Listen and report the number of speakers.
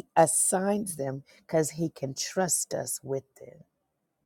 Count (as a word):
one